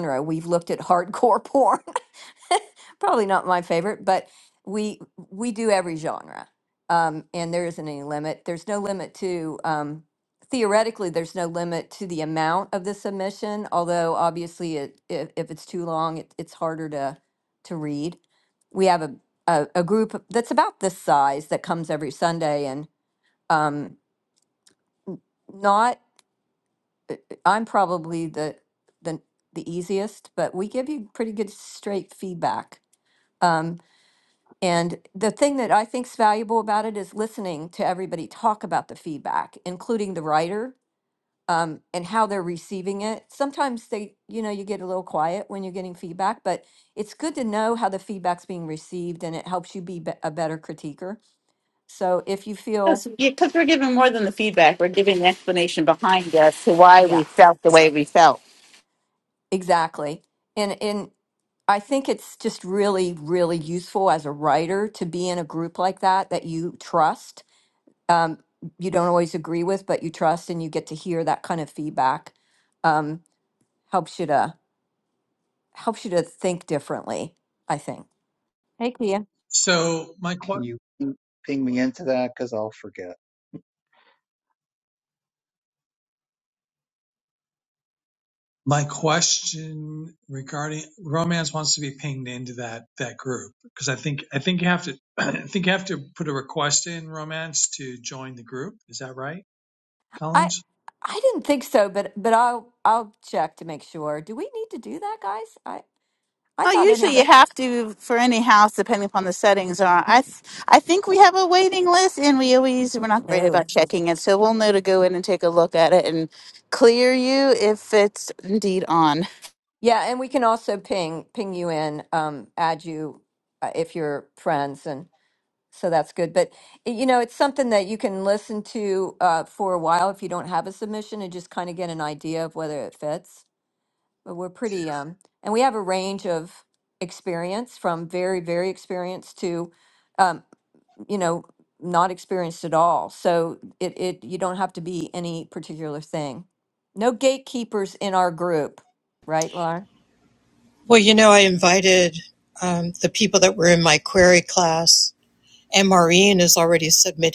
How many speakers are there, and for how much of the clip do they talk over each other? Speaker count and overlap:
5, about 1%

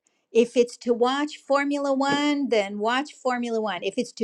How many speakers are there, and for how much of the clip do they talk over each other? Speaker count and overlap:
1, no overlap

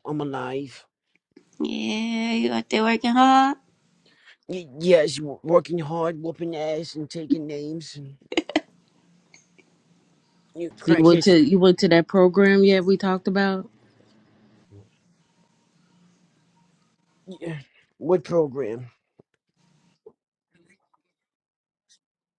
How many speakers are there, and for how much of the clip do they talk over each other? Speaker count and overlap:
3, about 2%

